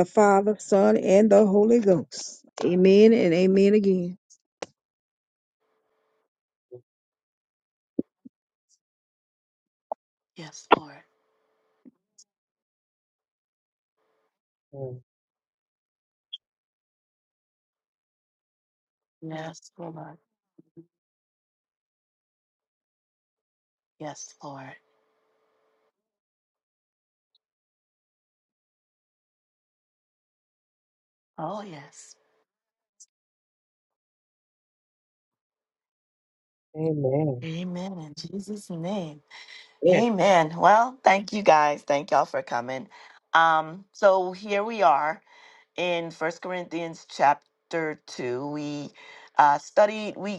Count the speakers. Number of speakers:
three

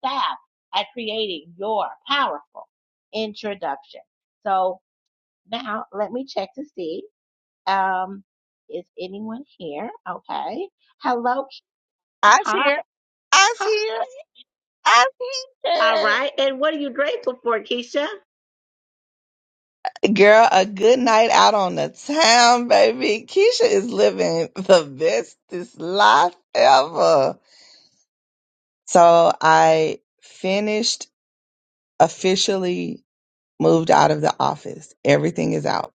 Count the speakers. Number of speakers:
two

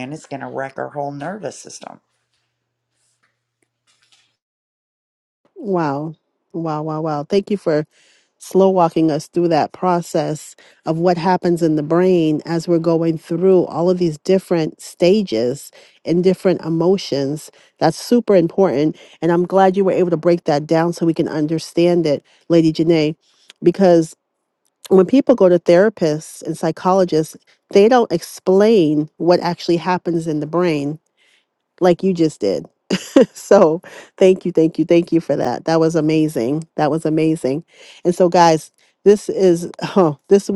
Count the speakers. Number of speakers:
two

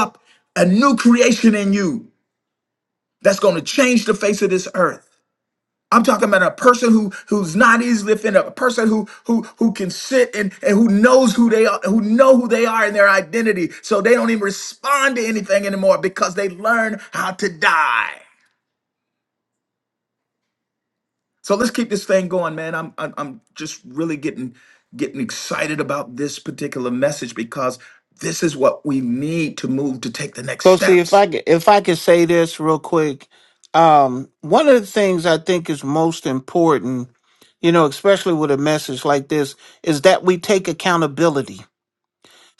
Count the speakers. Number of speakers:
two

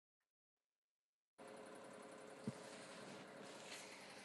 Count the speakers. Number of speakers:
zero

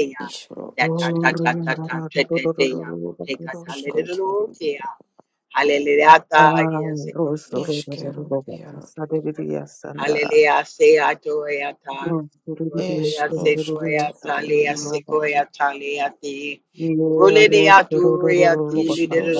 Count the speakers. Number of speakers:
three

